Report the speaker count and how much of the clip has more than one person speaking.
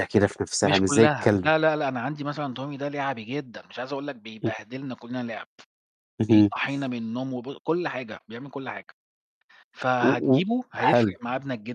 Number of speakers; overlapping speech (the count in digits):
2, about 17%